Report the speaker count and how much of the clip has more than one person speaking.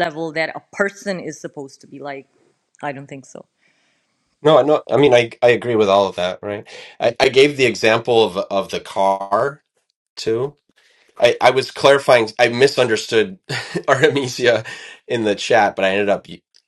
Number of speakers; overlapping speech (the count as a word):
two, no overlap